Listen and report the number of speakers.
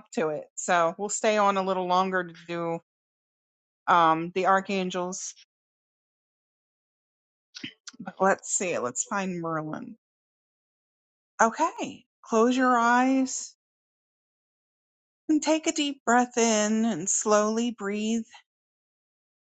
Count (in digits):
1